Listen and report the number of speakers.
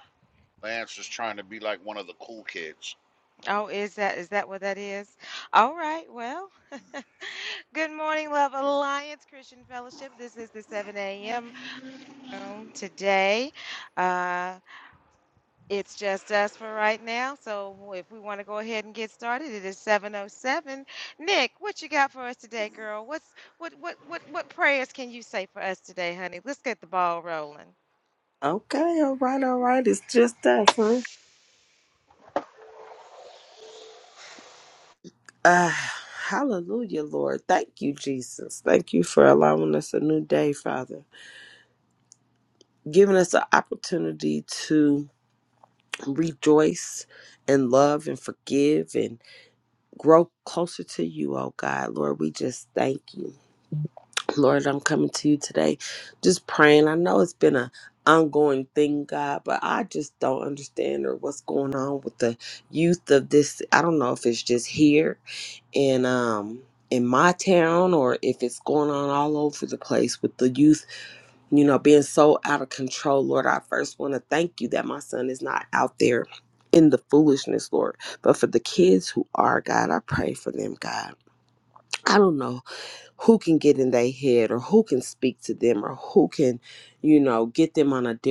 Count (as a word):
three